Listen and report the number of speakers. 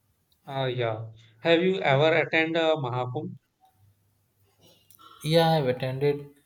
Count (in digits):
2